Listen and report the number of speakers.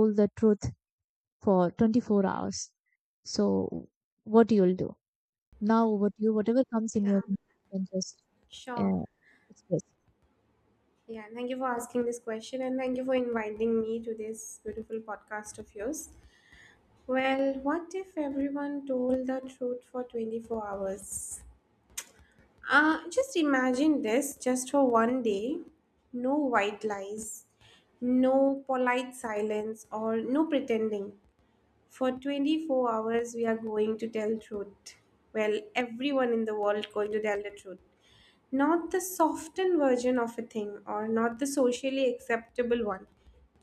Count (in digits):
2